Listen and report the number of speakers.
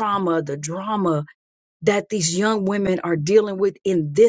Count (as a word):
one